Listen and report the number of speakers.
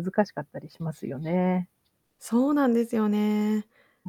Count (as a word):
two